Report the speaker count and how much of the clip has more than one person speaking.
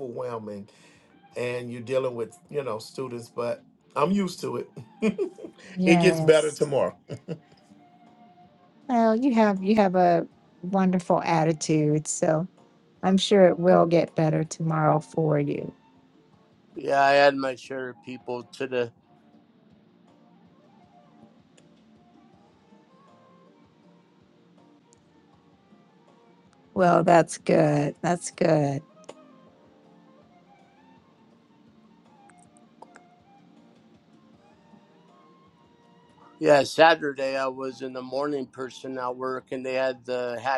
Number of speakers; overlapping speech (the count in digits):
3, about 1%